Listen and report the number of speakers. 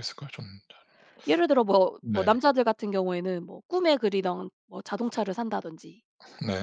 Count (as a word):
two